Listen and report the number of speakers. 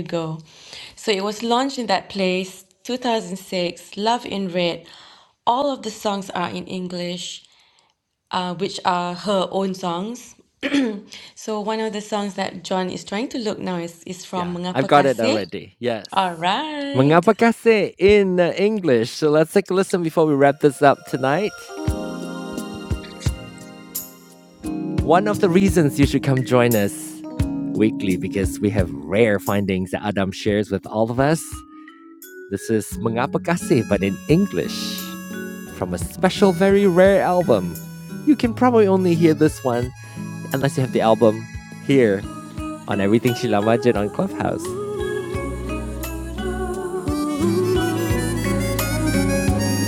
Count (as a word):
two